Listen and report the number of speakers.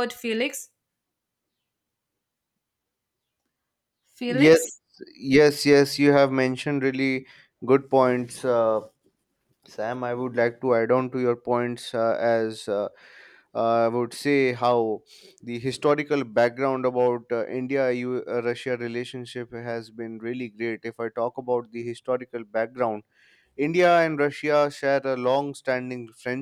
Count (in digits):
2